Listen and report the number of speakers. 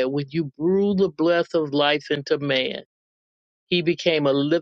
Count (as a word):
one